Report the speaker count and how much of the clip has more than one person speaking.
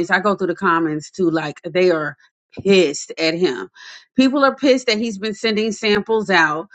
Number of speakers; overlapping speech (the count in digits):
1, no overlap